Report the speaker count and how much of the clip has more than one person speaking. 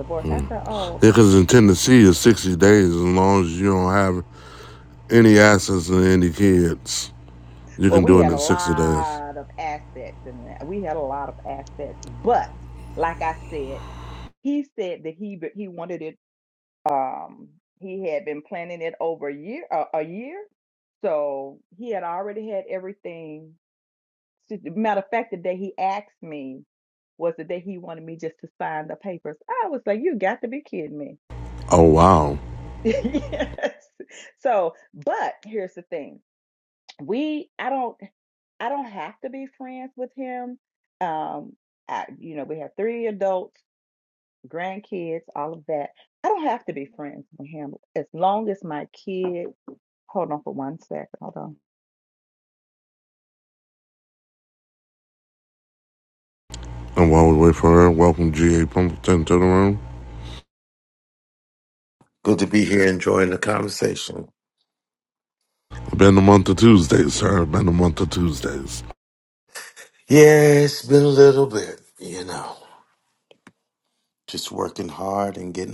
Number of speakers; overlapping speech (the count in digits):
3, about 2%